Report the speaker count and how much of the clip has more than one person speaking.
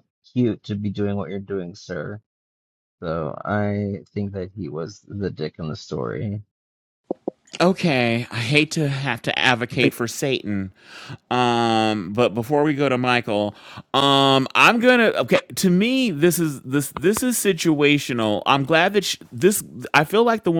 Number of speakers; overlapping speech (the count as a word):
two, no overlap